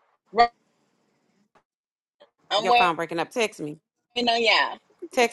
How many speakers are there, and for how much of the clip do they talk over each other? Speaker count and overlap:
two, about 6%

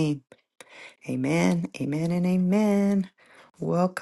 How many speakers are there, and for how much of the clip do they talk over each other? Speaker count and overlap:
one, no overlap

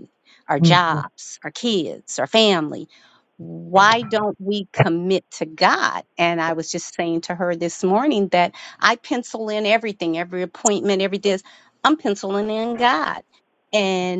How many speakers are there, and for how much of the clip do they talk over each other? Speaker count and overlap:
one, no overlap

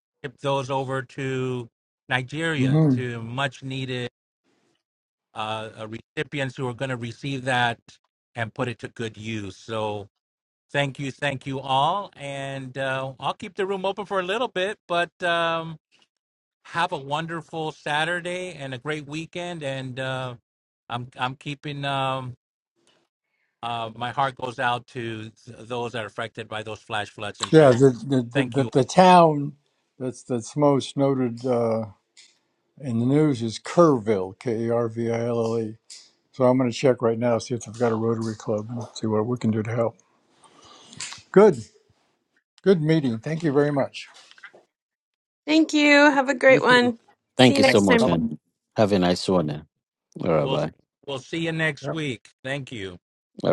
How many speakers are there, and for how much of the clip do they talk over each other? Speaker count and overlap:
four, about 5%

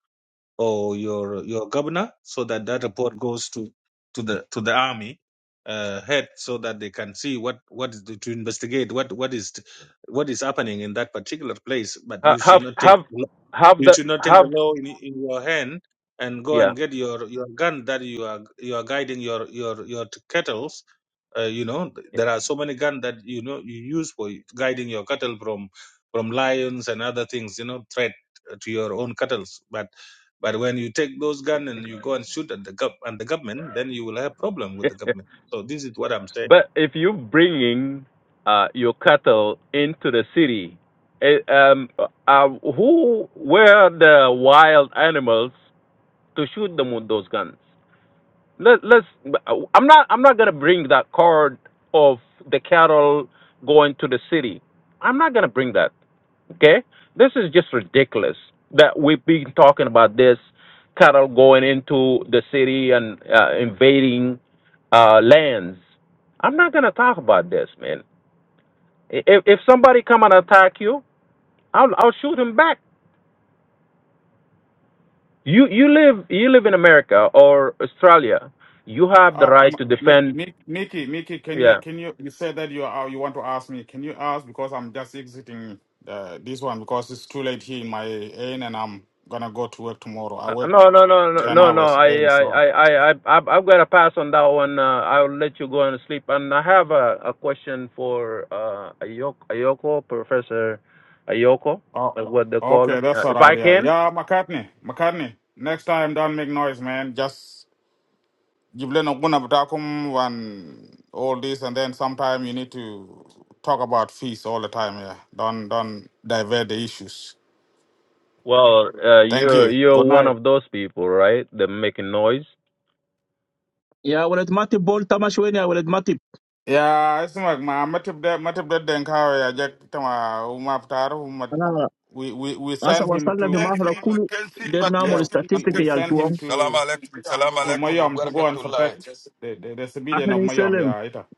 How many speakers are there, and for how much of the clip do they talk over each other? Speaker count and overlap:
five, about 9%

